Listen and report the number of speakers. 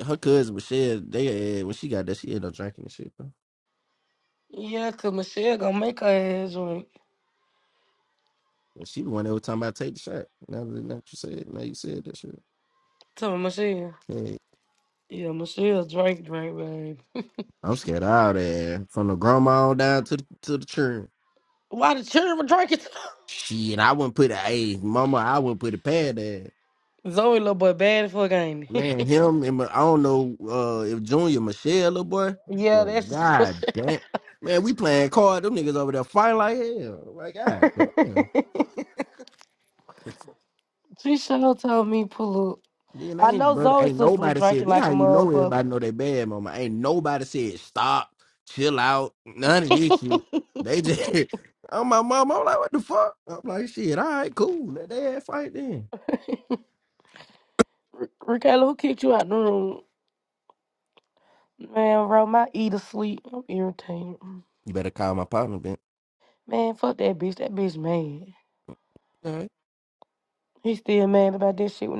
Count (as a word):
two